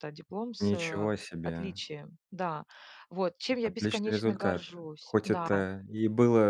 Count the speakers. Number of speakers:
2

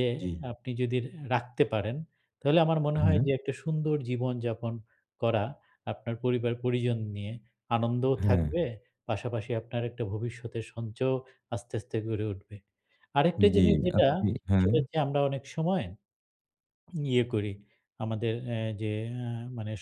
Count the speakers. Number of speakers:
2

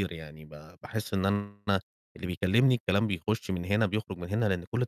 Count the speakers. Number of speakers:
1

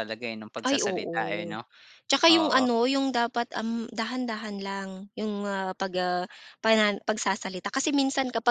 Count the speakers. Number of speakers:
2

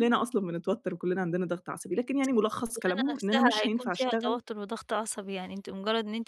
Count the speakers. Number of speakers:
2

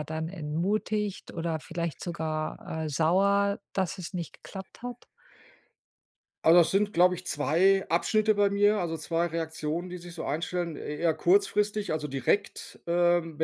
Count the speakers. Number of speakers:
2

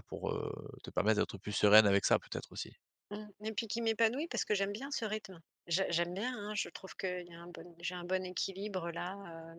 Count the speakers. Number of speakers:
2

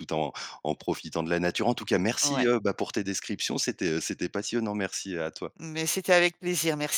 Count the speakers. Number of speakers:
2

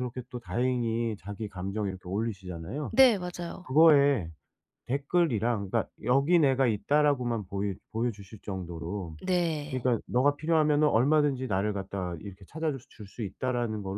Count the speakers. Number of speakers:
2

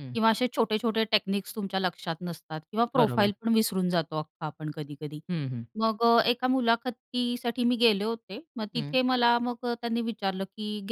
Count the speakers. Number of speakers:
2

